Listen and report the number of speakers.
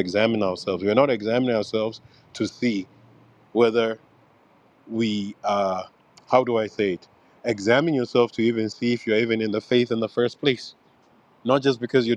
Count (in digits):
1